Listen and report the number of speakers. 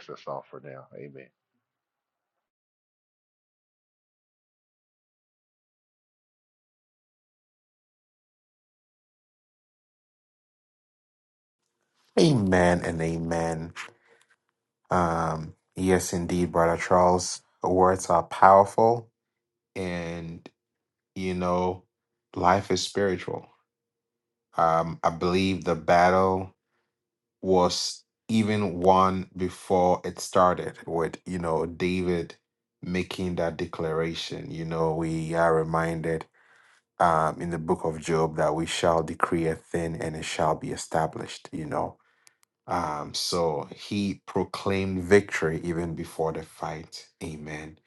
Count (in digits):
2